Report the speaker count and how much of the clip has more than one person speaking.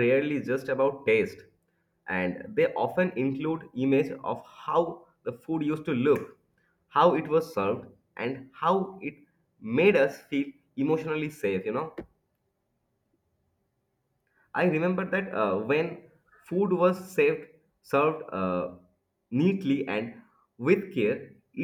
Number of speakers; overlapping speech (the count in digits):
1, no overlap